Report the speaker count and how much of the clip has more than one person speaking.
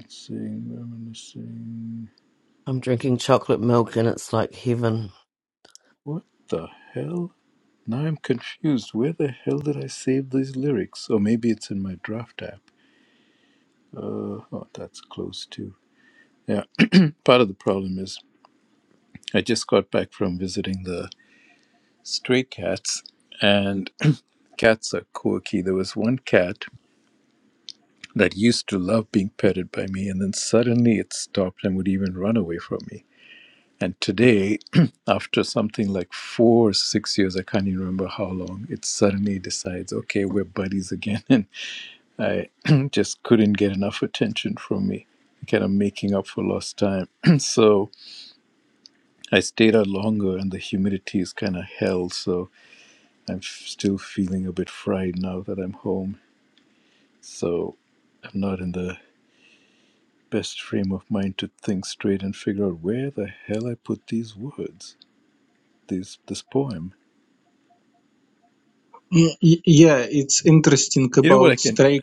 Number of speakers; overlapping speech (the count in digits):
3, about 1%